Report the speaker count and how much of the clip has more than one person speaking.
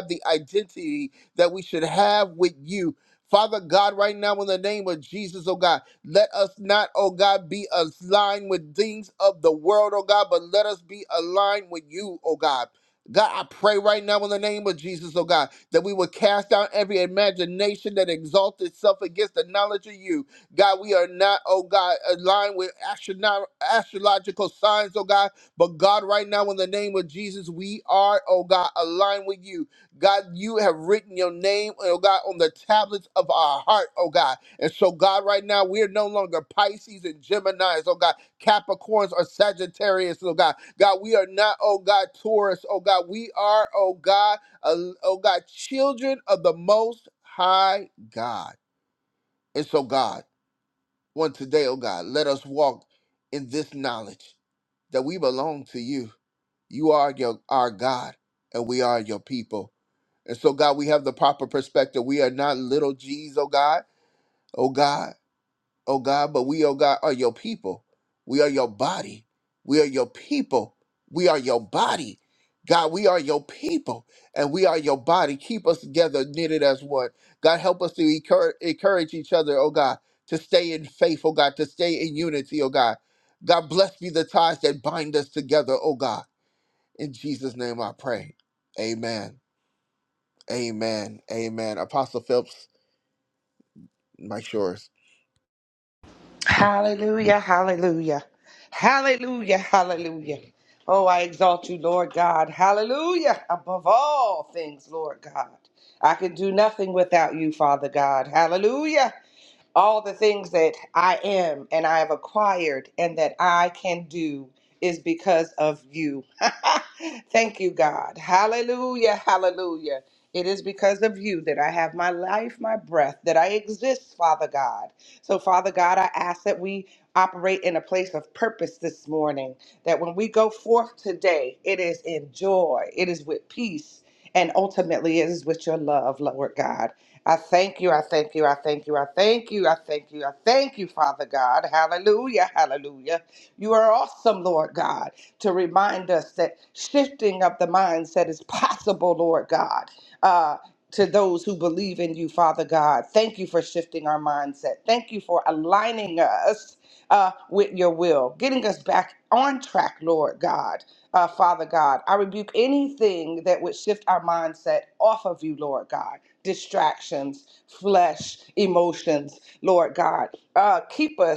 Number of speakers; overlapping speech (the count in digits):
2, no overlap